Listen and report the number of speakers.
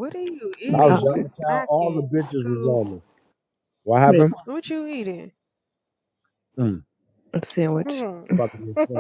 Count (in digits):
3